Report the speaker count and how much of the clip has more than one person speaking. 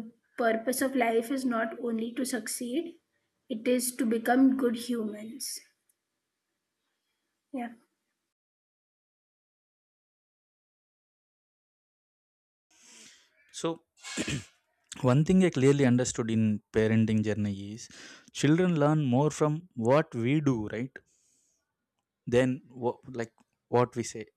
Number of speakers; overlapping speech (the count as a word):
two, no overlap